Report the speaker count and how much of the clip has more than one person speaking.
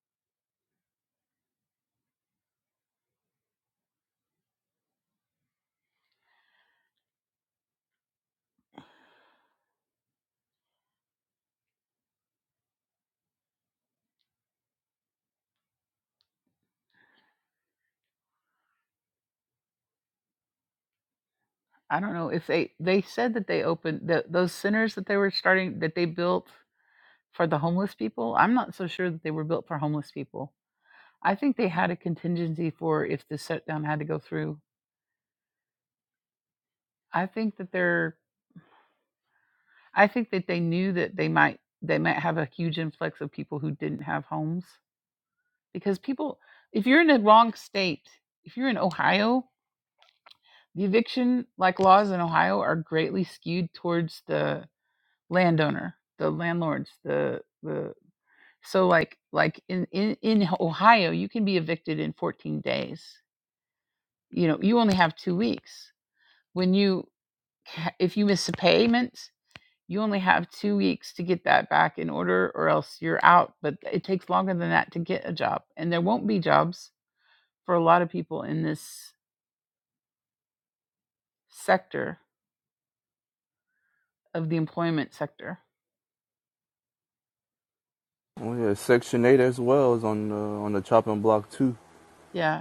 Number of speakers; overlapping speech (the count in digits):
2, no overlap